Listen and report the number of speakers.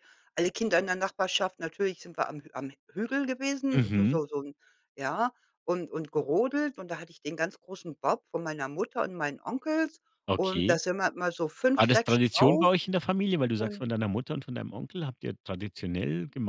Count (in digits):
2